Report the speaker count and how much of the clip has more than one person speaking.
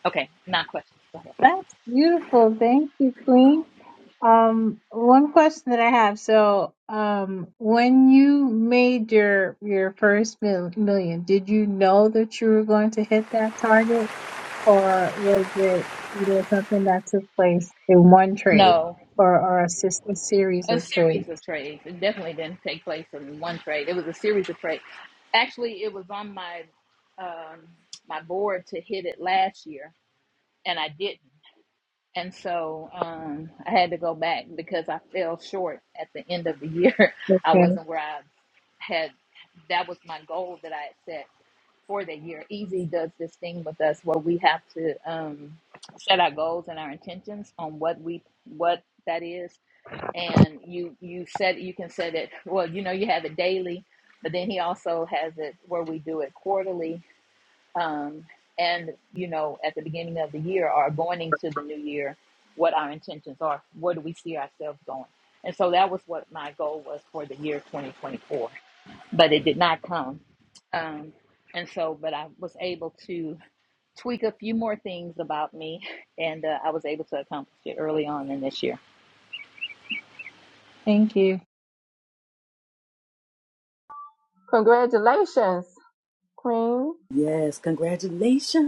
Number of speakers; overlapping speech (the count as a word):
four, about 2%